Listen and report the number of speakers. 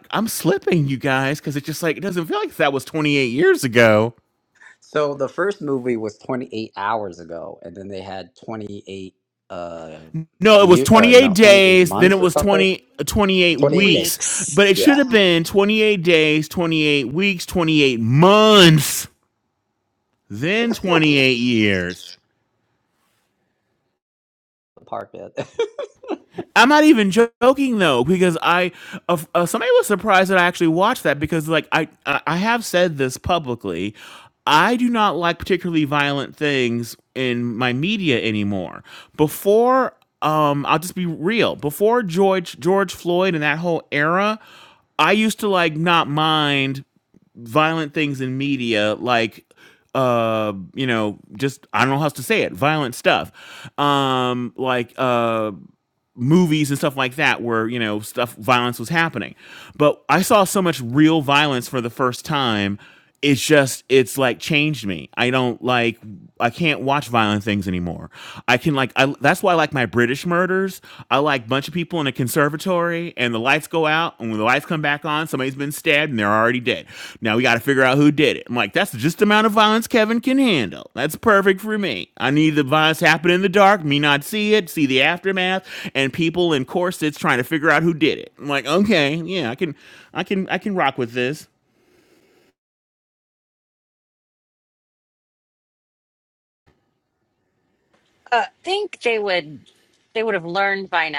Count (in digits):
3